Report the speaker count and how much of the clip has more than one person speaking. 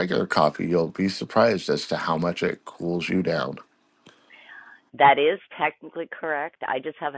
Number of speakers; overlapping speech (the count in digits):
2, no overlap